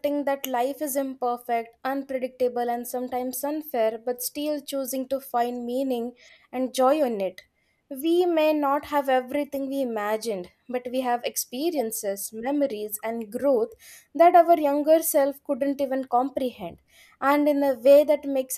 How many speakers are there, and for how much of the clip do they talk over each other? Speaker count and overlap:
1, no overlap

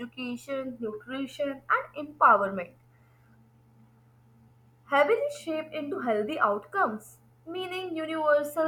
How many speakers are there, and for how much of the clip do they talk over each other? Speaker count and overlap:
1, no overlap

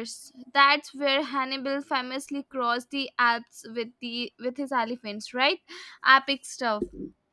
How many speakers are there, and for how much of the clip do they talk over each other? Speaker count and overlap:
1, no overlap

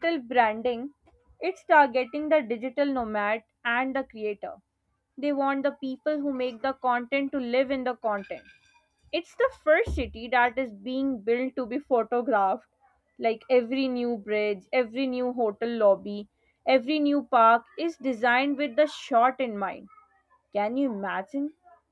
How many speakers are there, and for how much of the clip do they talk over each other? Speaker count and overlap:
1, no overlap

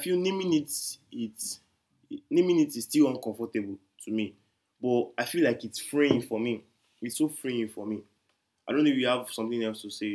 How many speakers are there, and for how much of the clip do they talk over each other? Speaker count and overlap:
1, no overlap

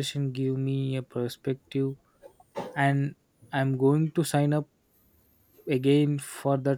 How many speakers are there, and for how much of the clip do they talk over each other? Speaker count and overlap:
1, no overlap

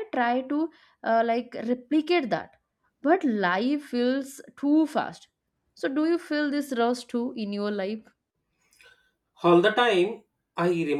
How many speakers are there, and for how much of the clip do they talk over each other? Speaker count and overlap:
2, no overlap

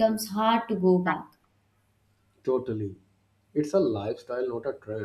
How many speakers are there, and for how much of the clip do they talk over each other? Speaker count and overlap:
2, no overlap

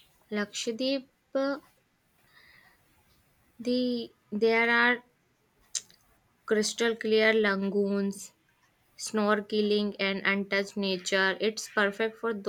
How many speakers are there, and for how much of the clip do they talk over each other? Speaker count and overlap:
1, no overlap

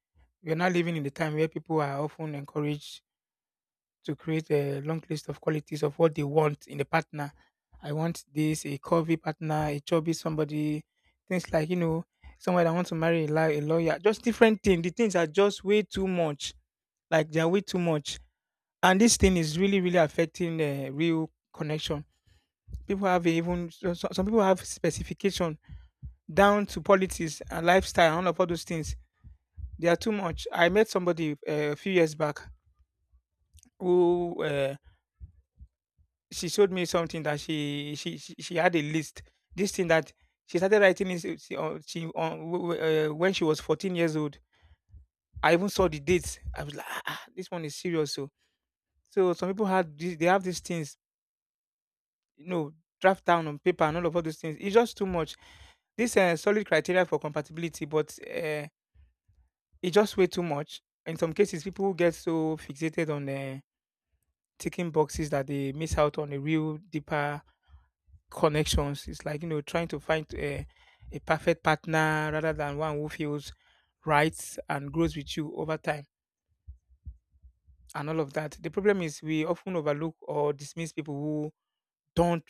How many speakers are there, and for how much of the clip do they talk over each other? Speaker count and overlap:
1, no overlap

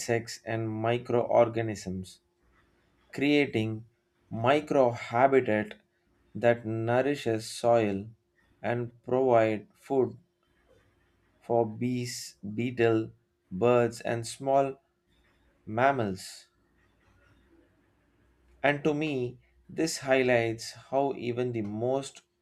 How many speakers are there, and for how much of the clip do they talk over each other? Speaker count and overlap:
1, no overlap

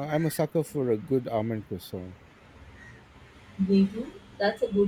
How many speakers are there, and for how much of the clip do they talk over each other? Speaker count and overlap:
2, no overlap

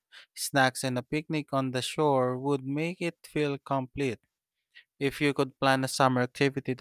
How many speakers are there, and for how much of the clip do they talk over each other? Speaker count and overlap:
1, no overlap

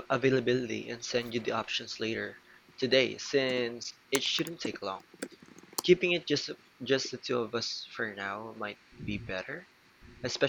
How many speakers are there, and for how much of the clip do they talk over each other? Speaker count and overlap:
1, no overlap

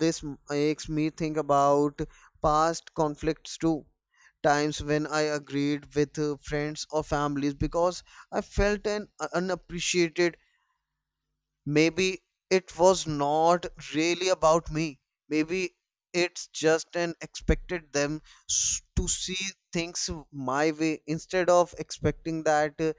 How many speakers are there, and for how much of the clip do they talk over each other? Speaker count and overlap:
1, no overlap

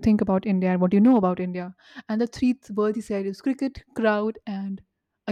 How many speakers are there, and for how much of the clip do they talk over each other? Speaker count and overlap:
1, no overlap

